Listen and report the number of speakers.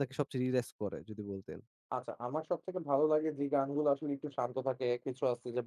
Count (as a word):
two